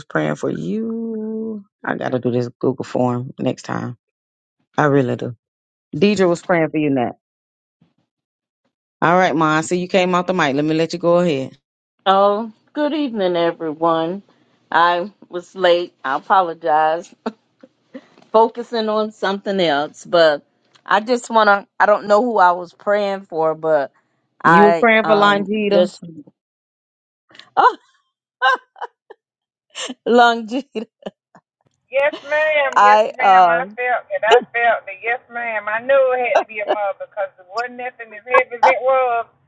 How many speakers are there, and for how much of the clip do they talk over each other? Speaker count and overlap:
three, about 6%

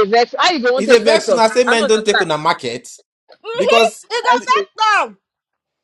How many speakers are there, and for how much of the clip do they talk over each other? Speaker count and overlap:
three, about 38%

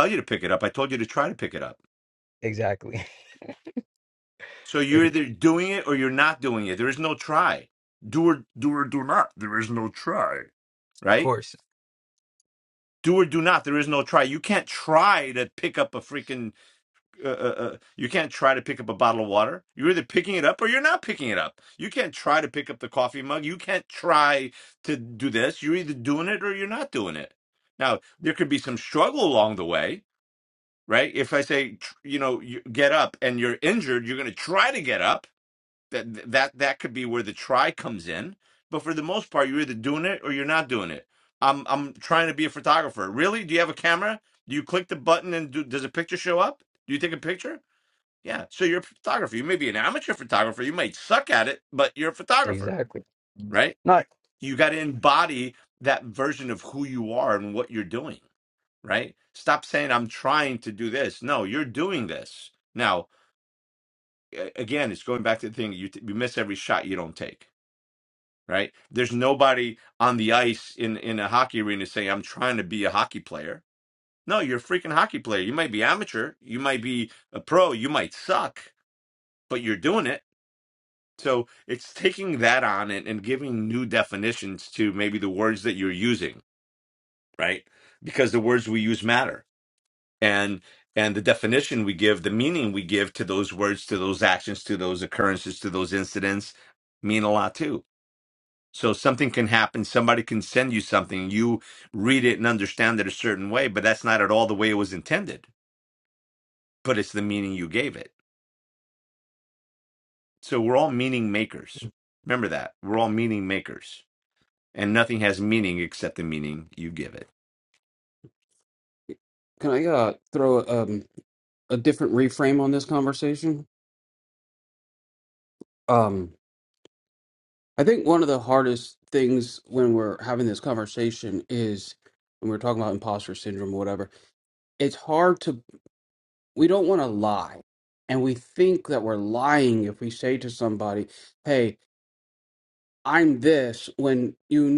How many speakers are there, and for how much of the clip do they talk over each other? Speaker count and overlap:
three, under 1%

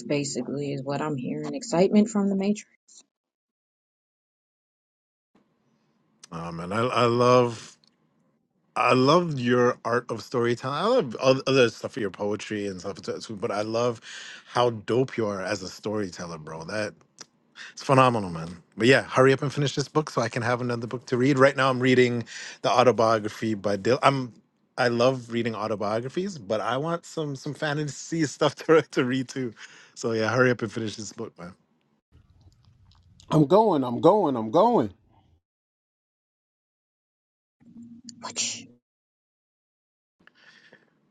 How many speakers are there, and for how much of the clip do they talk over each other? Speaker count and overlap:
three, no overlap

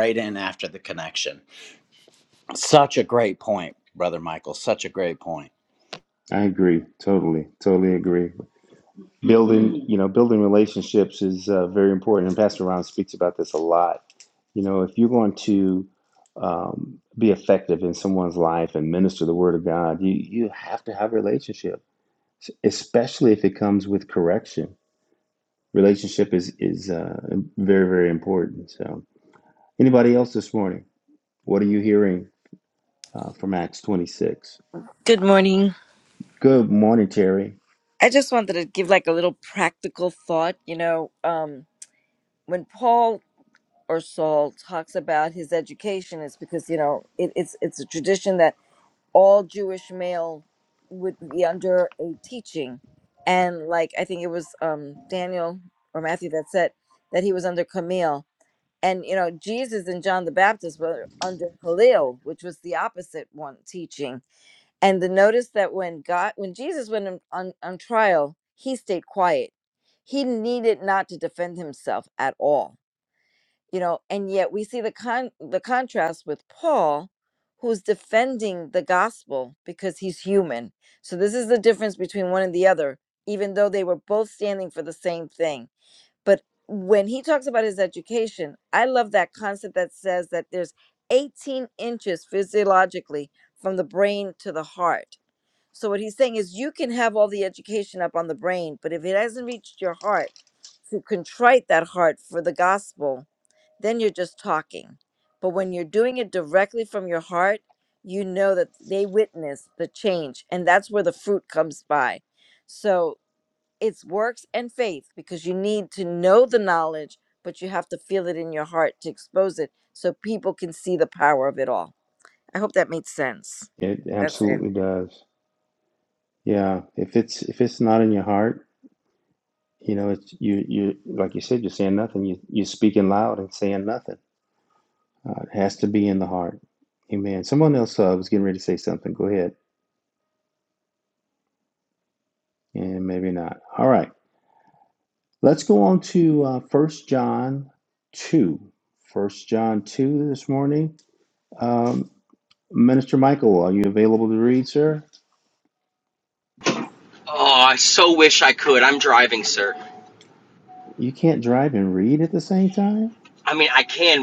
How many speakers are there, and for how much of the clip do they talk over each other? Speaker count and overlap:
four, under 1%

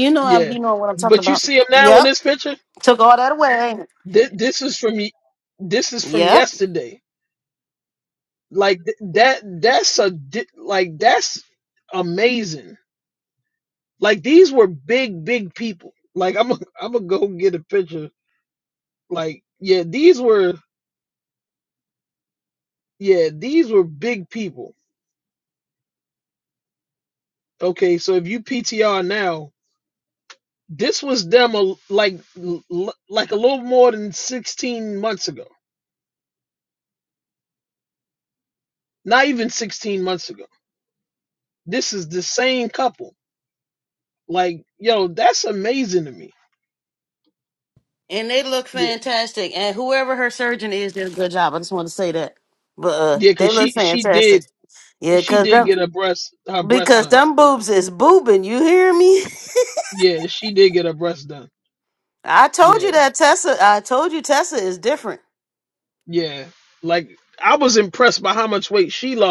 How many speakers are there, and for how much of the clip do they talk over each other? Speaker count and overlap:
two, about 7%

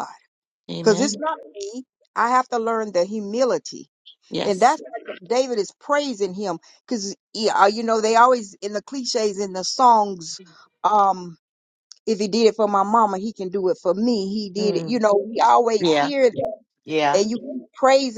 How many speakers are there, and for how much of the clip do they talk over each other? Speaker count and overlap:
two, about 6%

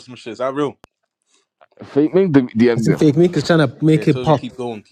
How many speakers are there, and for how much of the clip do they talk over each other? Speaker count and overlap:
three, about 15%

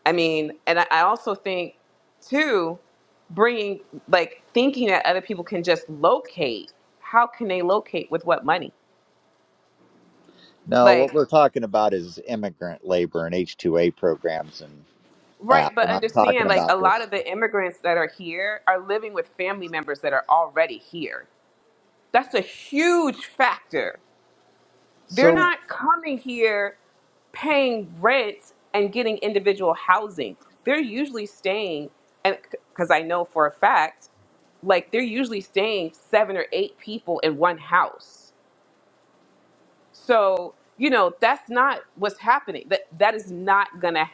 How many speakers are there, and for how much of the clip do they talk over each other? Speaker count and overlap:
two, about 5%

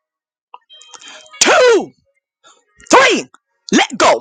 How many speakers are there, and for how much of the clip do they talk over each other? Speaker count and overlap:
one, no overlap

